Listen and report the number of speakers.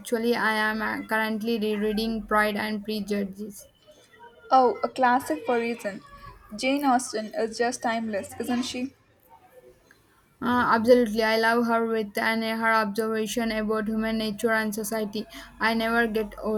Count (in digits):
2